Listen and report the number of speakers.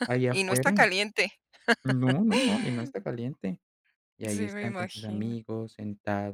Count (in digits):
2